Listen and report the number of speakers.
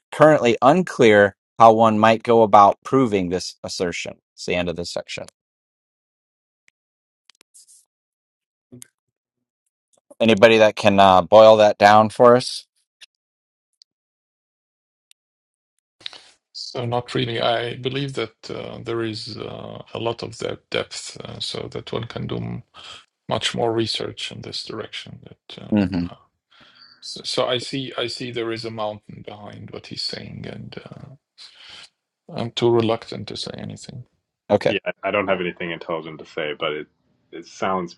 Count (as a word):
three